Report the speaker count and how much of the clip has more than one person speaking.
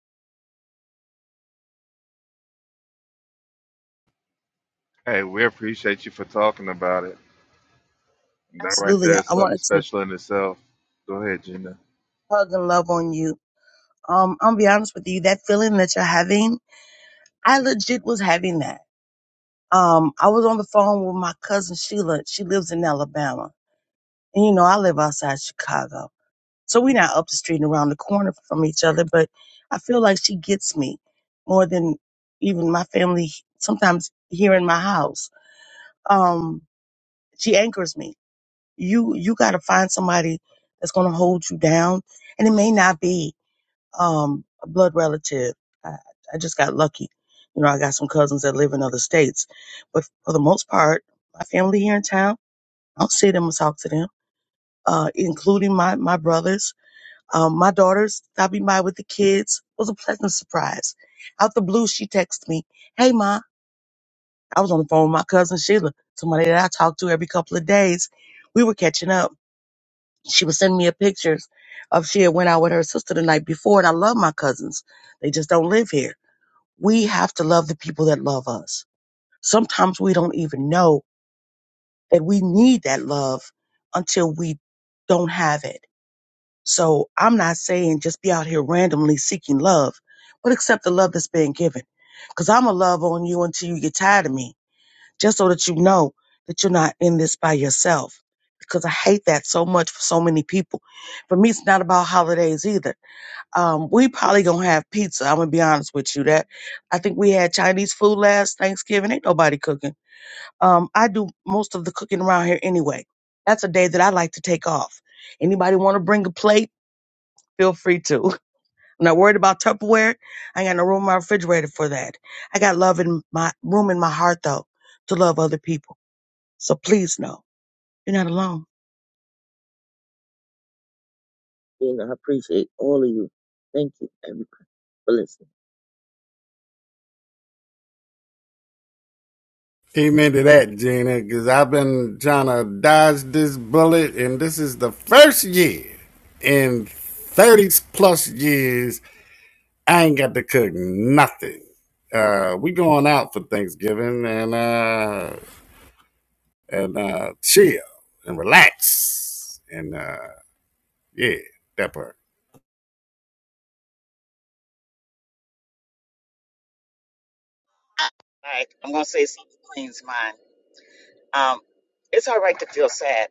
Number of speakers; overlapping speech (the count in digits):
5, about 1%